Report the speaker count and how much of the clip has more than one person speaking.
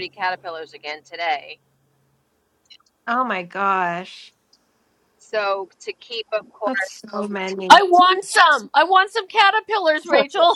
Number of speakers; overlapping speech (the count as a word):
three, about 3%